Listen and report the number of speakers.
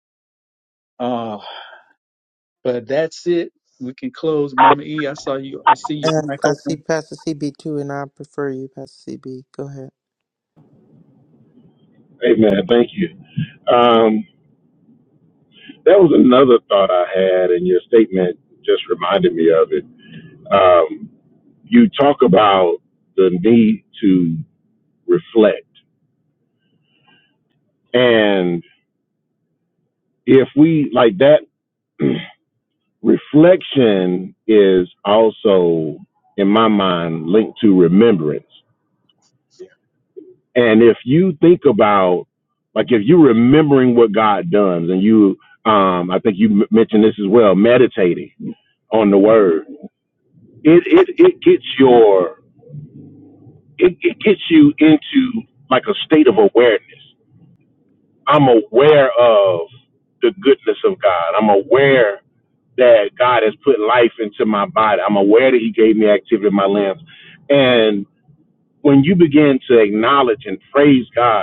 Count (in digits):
3